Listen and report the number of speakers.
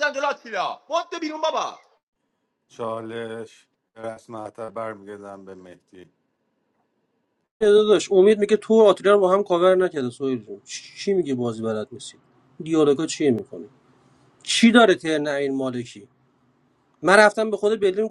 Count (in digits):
3